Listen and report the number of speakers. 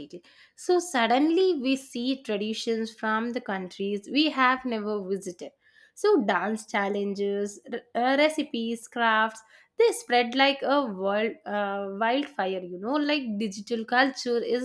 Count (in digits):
1